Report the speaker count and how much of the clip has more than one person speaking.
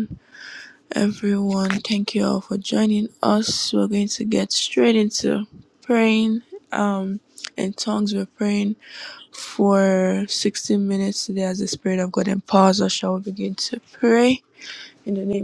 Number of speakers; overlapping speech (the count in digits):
1, no overlap